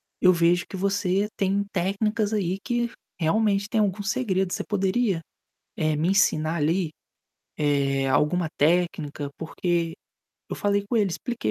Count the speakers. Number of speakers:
one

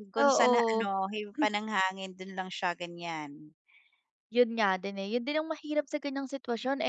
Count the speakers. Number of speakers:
two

